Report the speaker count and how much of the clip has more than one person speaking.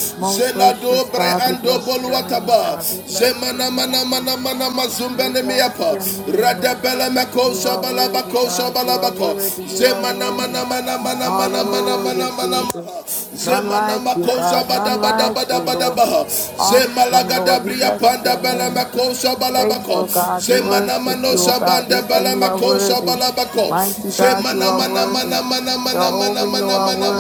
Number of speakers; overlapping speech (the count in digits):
2, about 72%